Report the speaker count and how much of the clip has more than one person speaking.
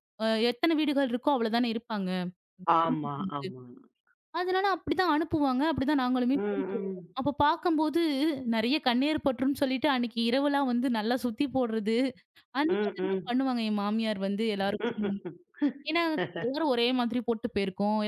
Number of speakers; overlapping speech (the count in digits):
2, about 7%